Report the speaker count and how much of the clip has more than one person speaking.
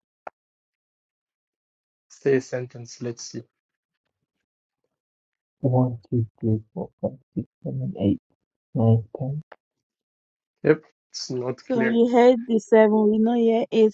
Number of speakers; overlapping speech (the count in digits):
3, about 2%